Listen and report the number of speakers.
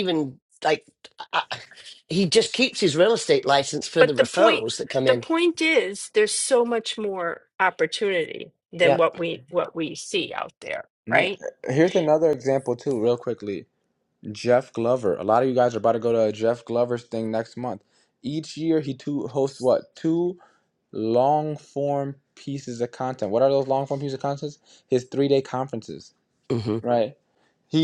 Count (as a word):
three